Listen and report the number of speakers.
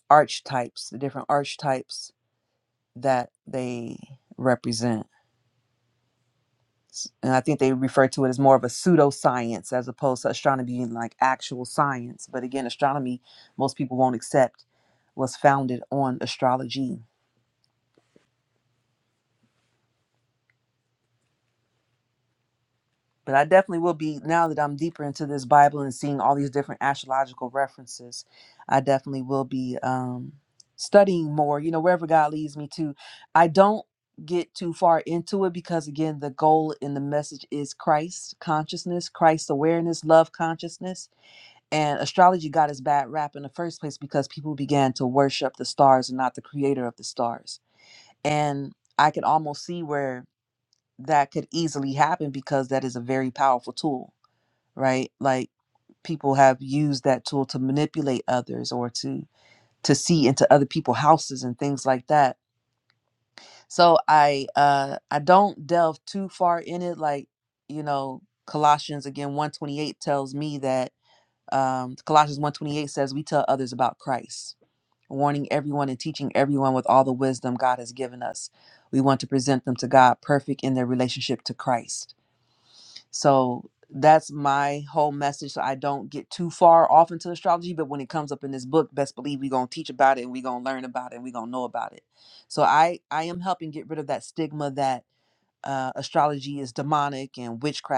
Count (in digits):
1